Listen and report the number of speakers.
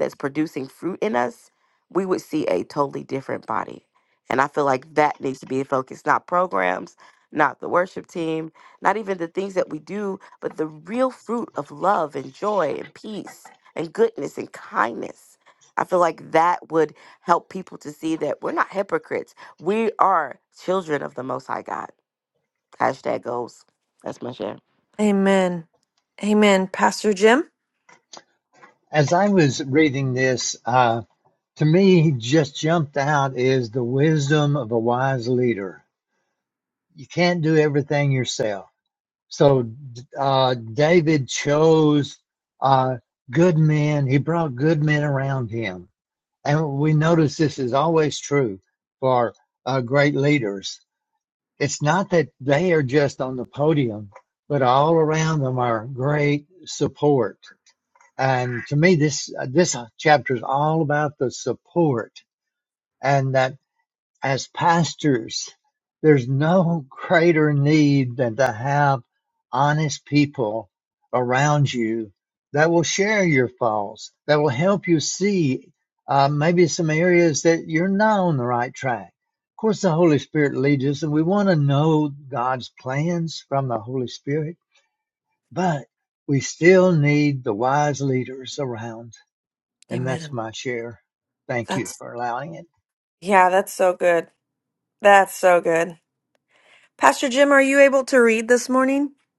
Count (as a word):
three